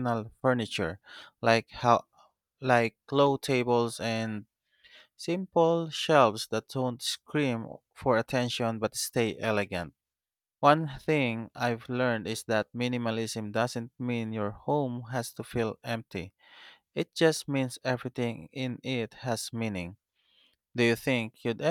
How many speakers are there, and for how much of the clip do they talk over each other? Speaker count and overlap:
1, no overlap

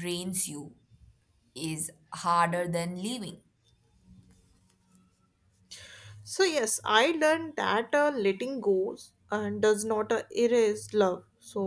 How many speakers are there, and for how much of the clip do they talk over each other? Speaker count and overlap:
2, no overlap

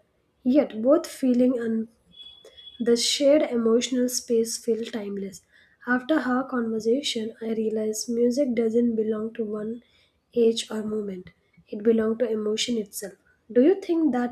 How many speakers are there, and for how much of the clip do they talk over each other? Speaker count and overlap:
1, no overlap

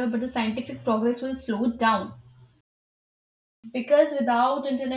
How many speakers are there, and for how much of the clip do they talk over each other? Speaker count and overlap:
1, no overlap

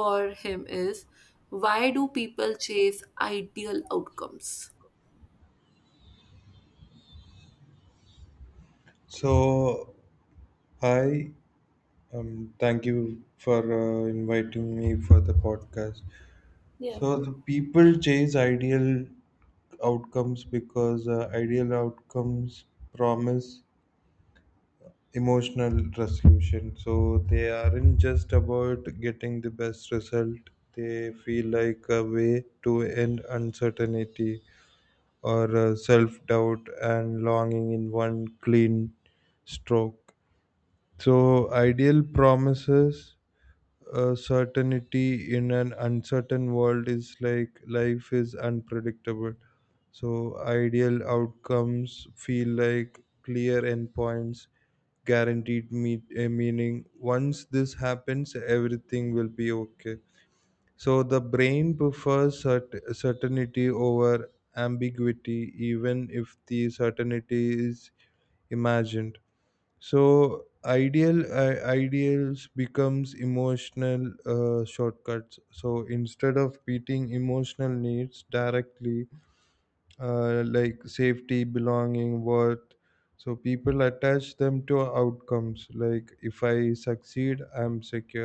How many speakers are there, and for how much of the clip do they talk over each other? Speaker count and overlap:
2, under 1%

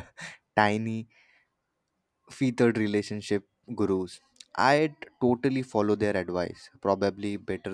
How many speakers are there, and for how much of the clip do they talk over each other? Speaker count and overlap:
1, no overlap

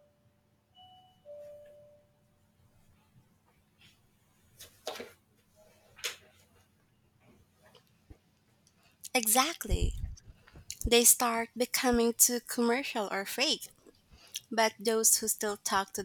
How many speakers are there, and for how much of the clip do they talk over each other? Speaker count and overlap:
1, no overlap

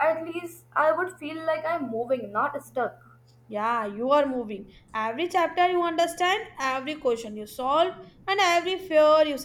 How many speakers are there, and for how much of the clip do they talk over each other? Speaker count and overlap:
2, no overlap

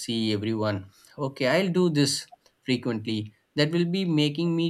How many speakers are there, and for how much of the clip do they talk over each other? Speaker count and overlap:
1, no overlap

